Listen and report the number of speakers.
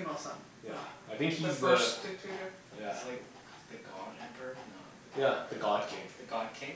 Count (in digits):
3